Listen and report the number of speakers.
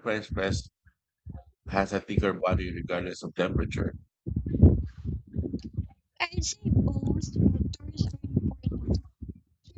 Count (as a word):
two